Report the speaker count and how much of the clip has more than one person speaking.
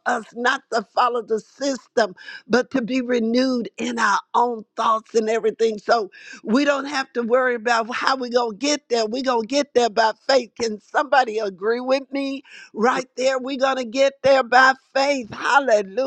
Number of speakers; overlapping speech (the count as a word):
one, no overlap